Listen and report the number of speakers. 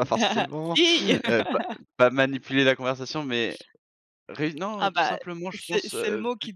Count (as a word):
two